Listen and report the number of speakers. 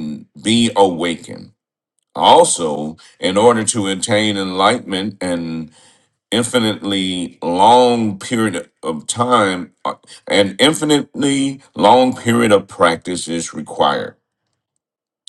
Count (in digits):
1